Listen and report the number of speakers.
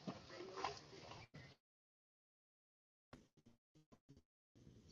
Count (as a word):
zero